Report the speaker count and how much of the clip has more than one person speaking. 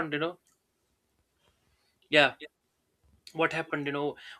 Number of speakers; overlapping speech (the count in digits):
1, no overlap